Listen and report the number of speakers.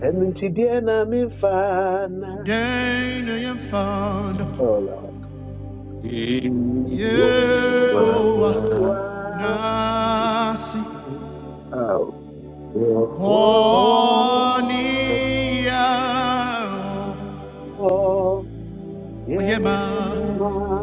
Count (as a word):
four